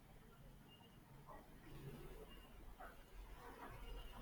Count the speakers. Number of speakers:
zero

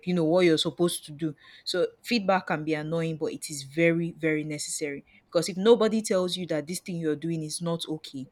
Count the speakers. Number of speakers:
one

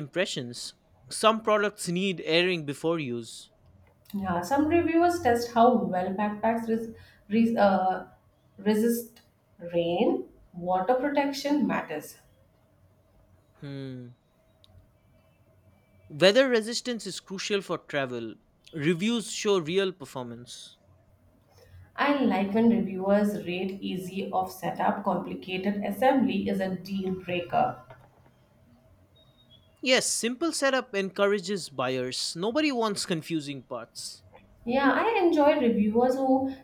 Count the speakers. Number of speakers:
two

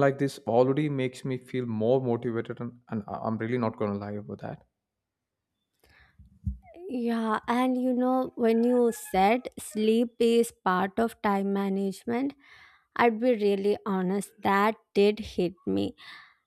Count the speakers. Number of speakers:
two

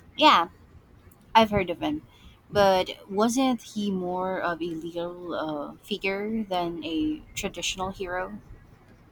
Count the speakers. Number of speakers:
one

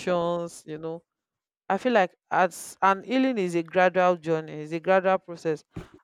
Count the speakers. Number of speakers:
one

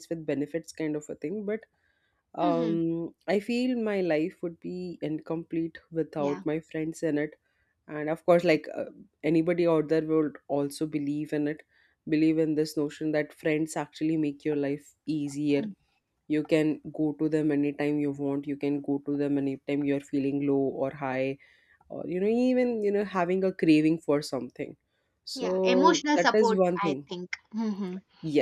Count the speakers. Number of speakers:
two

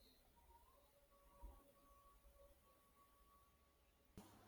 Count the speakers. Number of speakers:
zero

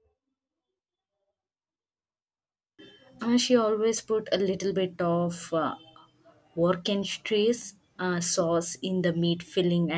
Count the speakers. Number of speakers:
one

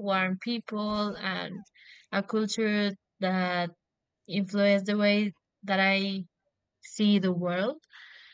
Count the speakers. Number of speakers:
one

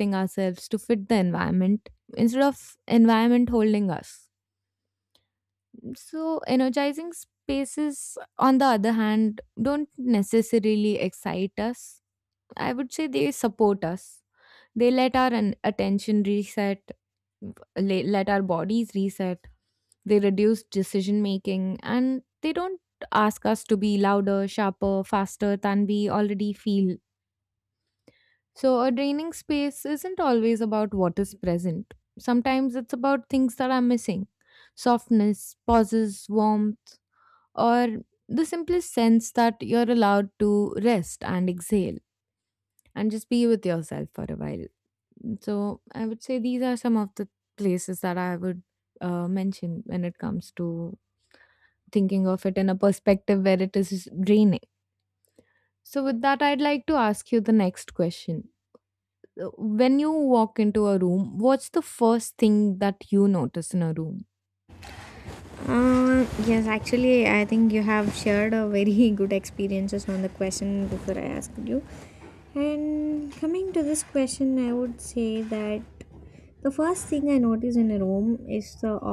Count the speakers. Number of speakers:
two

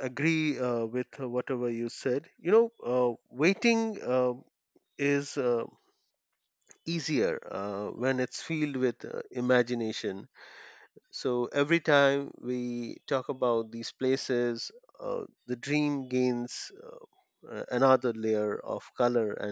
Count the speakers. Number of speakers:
one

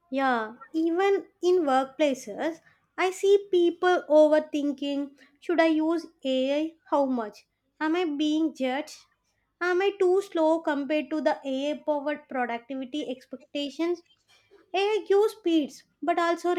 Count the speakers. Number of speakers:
one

